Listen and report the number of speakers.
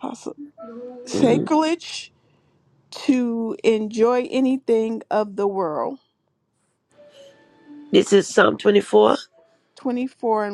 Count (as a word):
two